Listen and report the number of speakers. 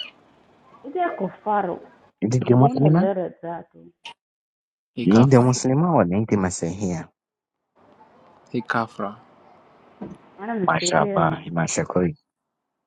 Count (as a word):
three